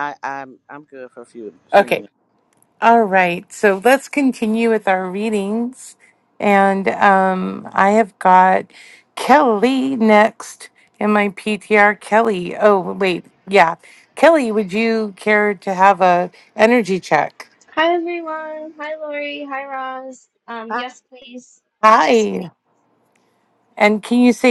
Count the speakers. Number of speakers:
3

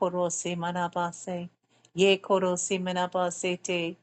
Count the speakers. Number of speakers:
1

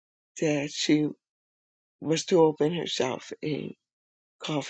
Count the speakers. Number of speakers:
1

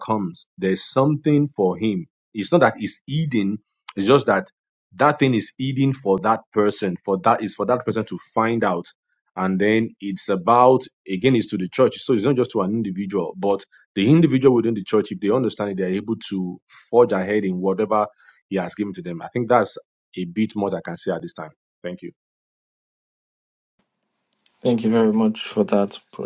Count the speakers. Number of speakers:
2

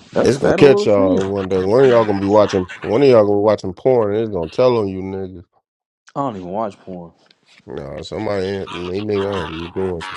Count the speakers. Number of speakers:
2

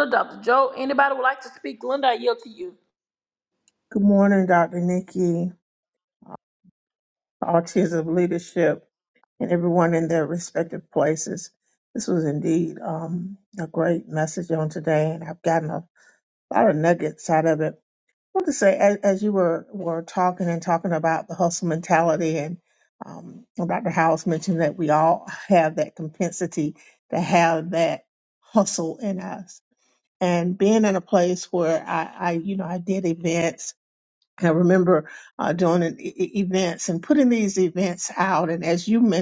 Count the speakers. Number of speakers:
2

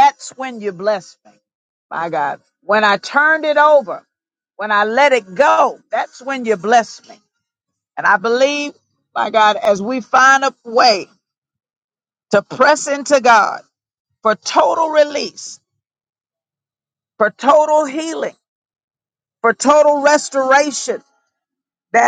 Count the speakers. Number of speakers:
1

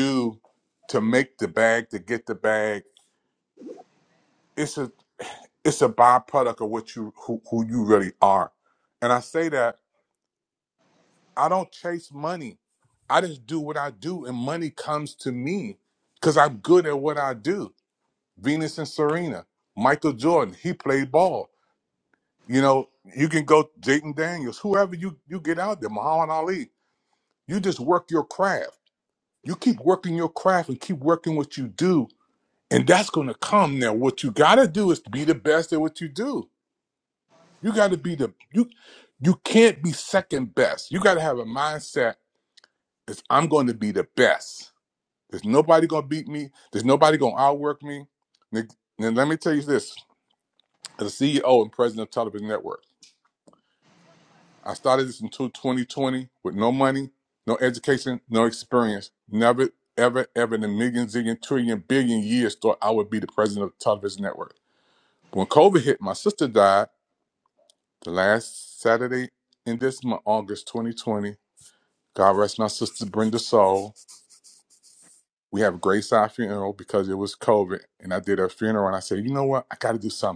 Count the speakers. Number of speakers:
1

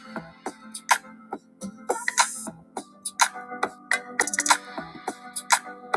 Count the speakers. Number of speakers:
0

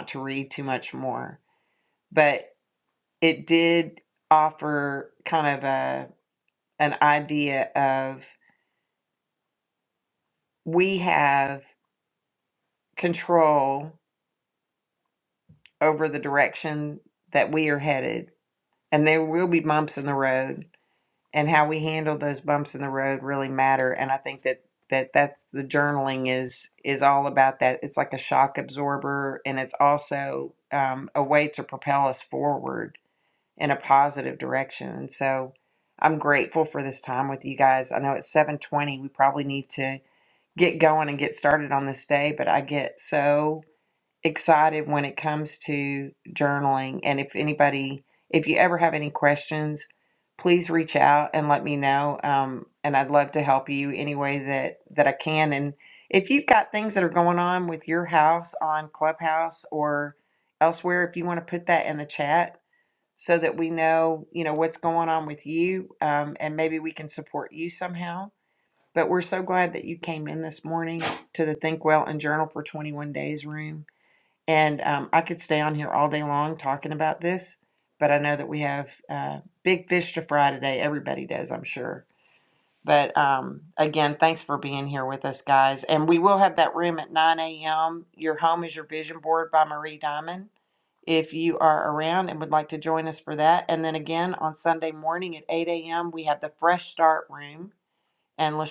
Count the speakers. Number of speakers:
1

